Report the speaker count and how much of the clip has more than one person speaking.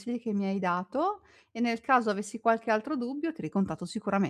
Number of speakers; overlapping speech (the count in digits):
1, no overlap